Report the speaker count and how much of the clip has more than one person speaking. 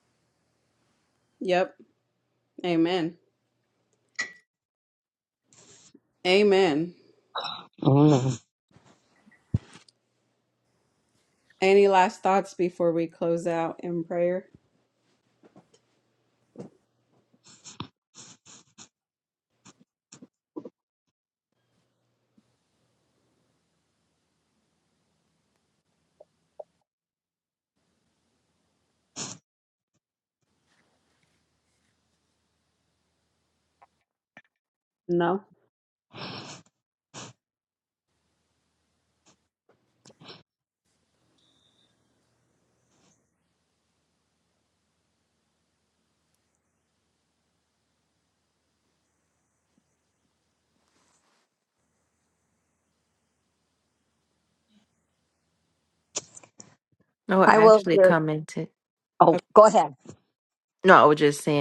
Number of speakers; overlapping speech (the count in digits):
3, about 1%